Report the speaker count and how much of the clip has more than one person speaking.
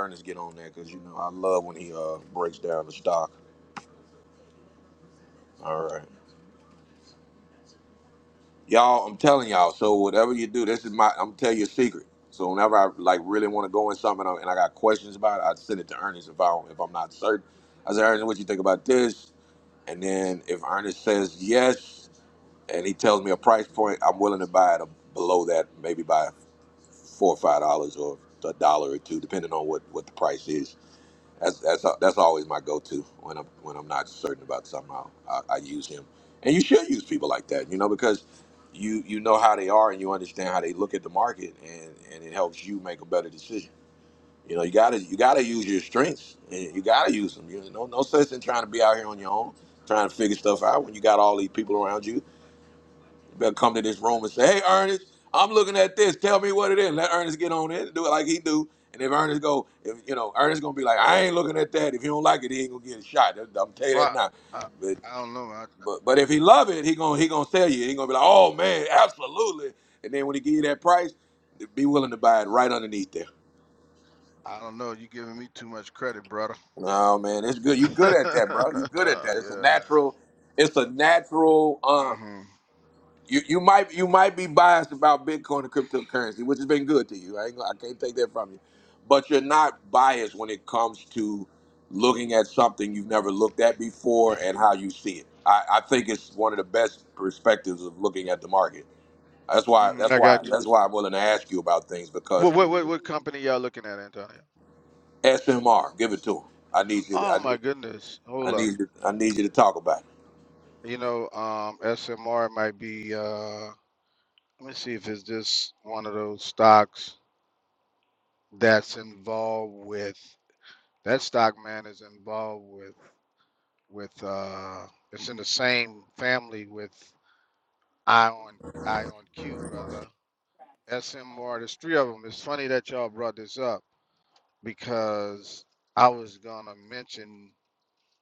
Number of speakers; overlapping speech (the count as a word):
two, about 2%